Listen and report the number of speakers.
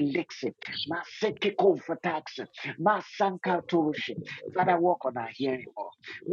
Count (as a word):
two